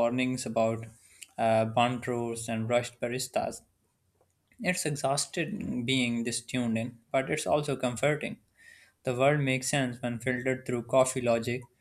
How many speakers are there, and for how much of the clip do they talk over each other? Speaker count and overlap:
1, no overlap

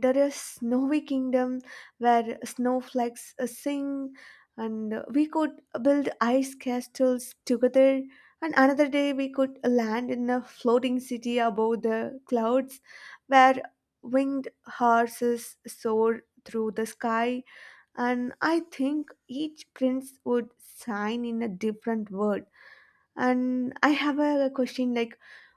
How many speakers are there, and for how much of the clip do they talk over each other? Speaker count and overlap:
1, no overlap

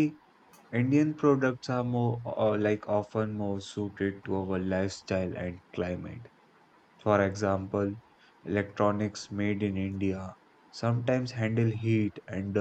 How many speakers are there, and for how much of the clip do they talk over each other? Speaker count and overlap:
1, no overlap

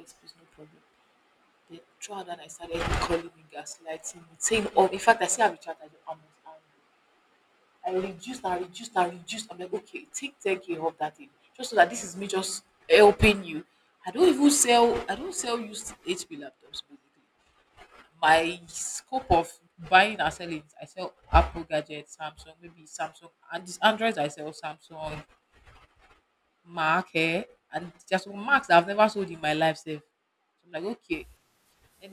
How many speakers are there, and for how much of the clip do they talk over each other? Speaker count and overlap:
1, no overlap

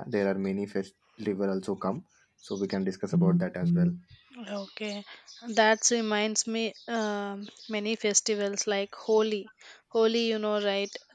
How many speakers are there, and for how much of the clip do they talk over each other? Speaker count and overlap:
2, no overlap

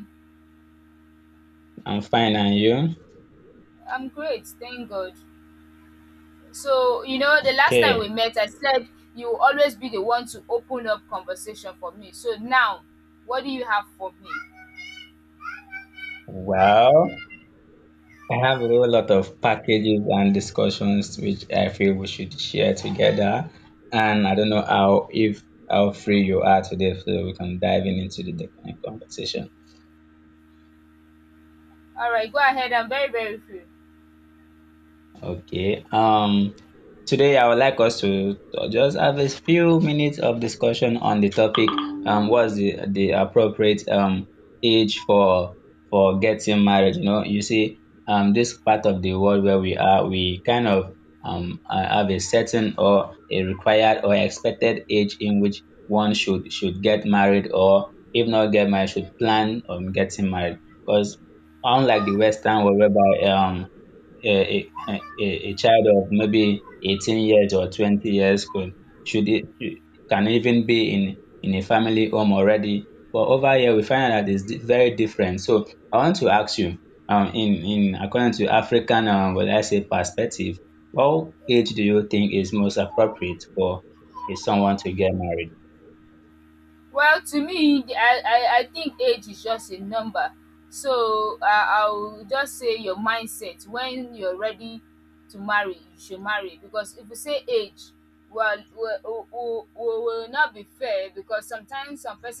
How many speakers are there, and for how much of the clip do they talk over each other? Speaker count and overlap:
2, about 1%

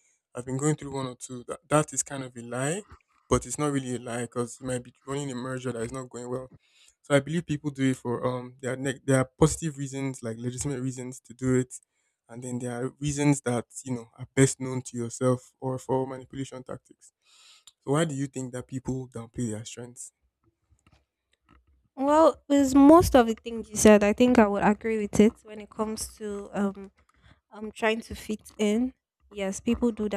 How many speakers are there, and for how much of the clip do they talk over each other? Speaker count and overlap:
2, no overlap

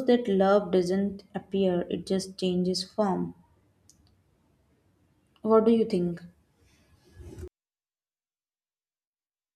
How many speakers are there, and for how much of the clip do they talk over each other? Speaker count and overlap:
1, no overlap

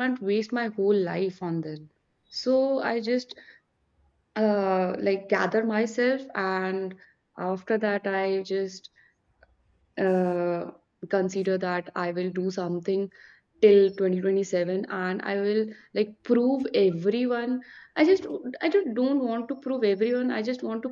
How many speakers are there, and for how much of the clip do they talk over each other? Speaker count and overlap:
1, no overlap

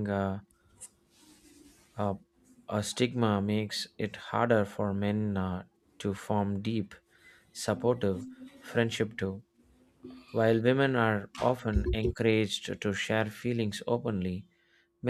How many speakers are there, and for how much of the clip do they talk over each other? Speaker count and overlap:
1, no overlap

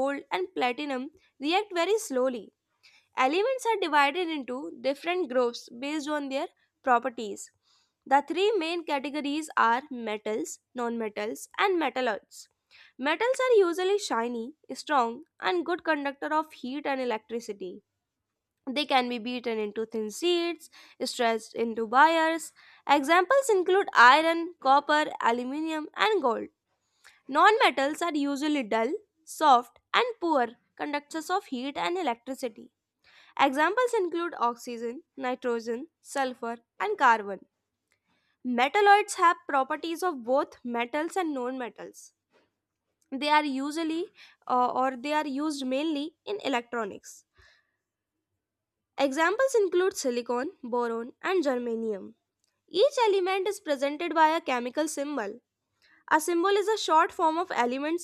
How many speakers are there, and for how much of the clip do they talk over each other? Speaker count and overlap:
1, no overlap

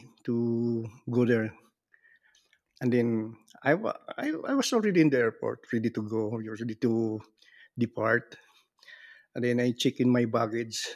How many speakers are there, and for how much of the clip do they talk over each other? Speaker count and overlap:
1, no overlap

